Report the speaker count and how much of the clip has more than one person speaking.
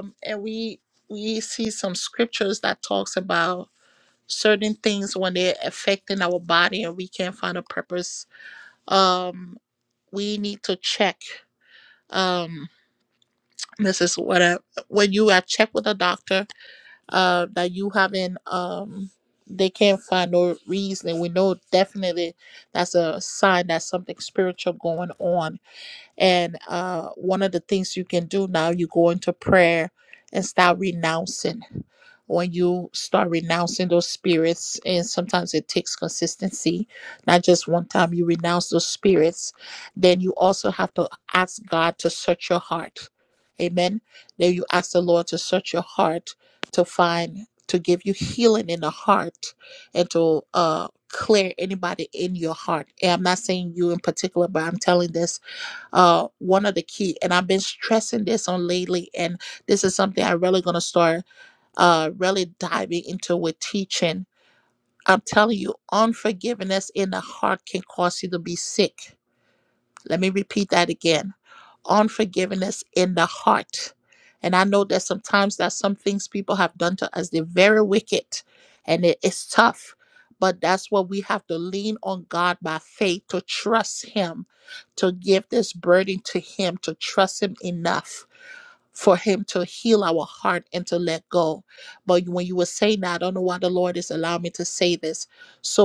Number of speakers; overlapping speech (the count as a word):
one, no overlap